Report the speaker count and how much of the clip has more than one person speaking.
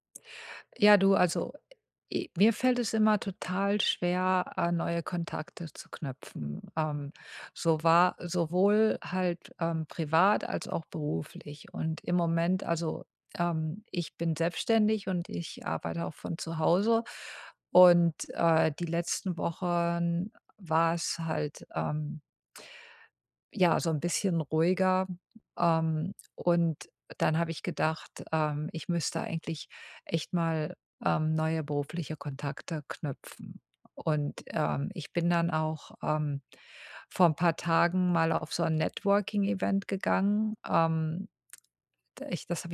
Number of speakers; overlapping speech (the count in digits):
1, no overlap